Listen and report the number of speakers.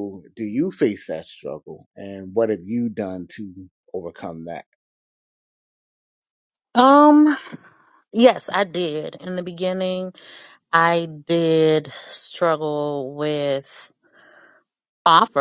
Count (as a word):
two